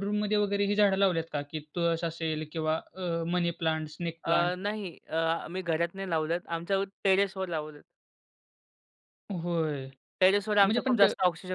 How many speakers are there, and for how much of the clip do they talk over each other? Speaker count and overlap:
2, about 7%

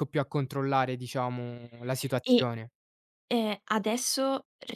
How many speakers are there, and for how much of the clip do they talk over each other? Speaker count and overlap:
2, about 4%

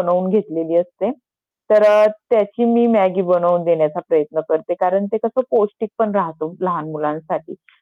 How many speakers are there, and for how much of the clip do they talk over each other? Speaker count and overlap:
1, no overlap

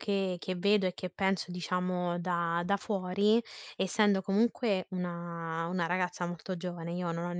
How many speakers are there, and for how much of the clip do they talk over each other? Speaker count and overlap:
1, no overlap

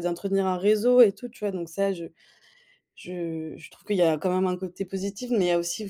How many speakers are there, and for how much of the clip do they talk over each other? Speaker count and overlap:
1, no overlap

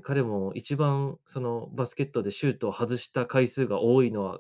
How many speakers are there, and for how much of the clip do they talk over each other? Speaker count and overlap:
1, no overlap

